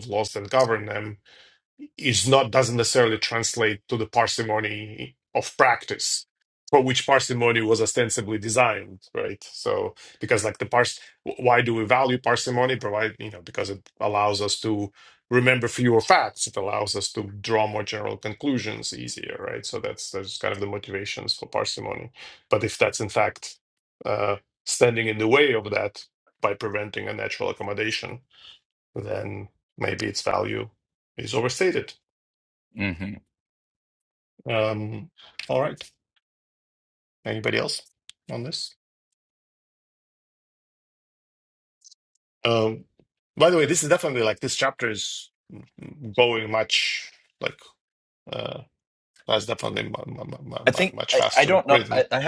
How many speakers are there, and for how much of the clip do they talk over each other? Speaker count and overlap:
two, about 3%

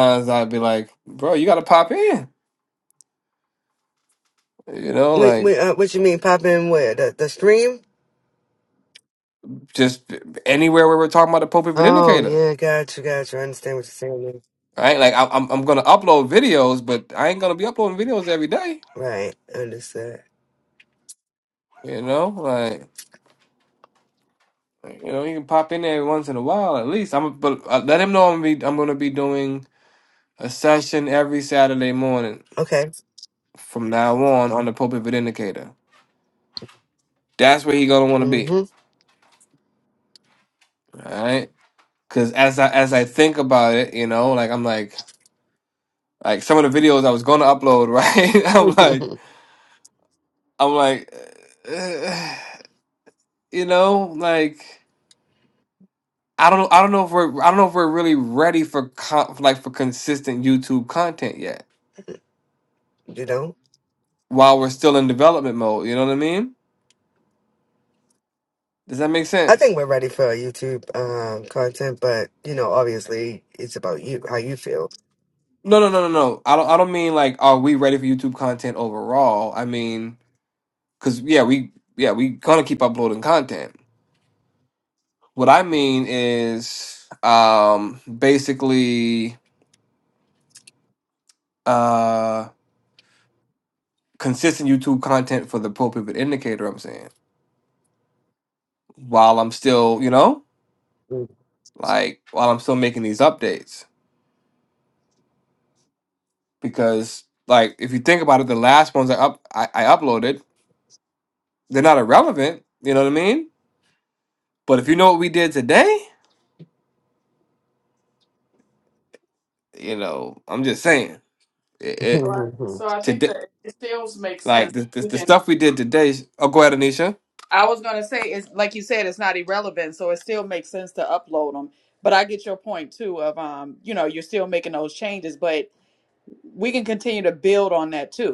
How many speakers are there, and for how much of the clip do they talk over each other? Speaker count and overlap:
three, about 2%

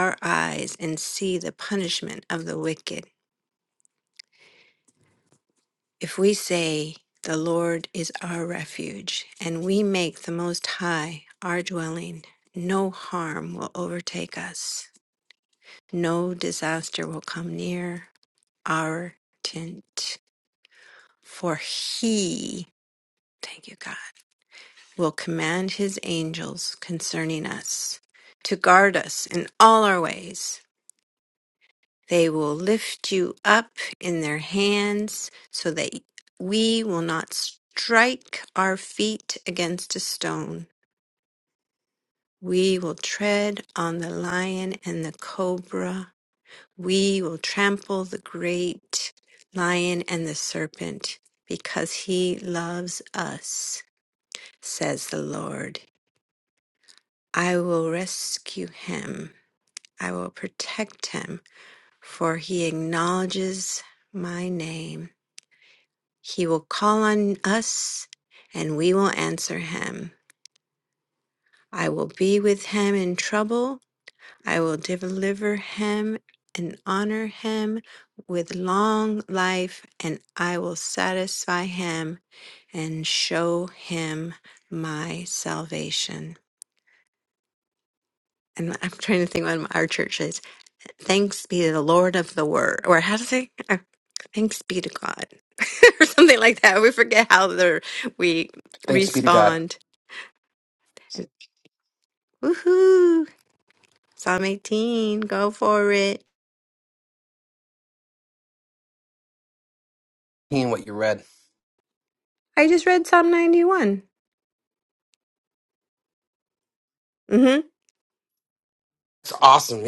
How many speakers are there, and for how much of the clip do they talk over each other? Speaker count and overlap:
two, about 1%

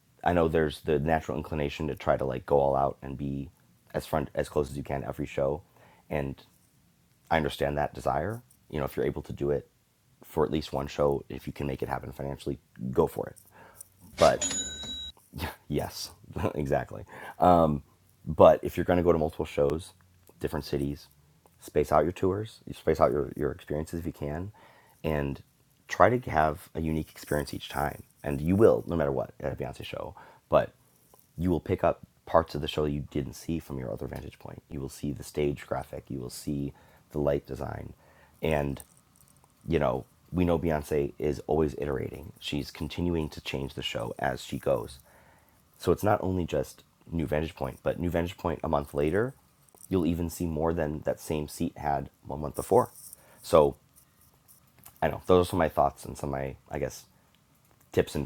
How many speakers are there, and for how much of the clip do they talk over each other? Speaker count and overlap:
one, no overlap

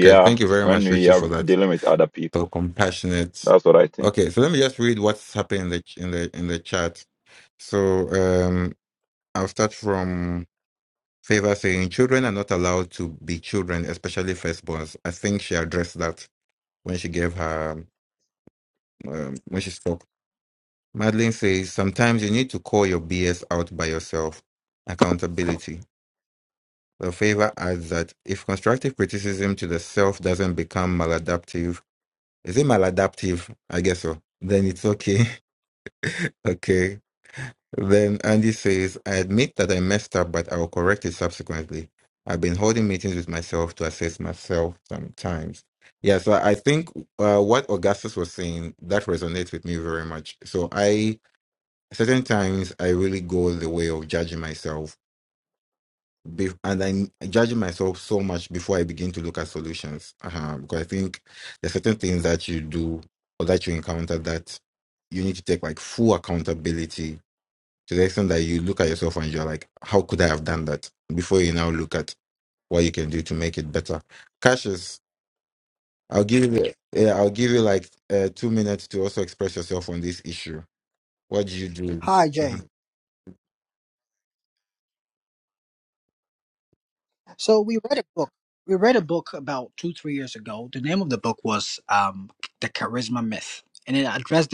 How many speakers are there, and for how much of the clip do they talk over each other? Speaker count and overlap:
three, about 2%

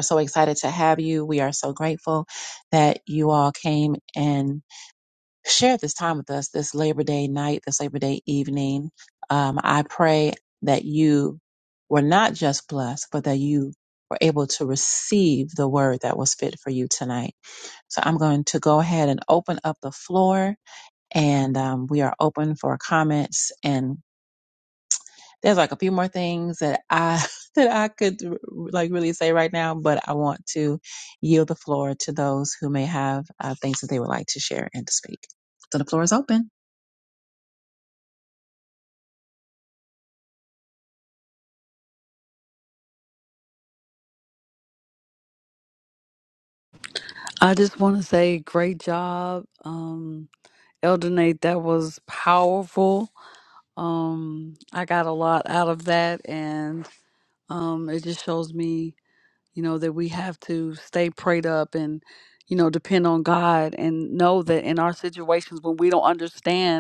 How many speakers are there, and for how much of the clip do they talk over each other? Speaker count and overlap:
two, no overlap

